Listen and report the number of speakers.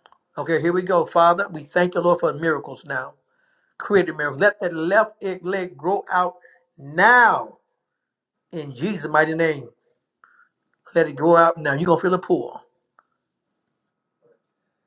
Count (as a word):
one